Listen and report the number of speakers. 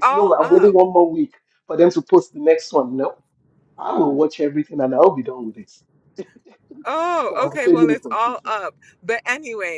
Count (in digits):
2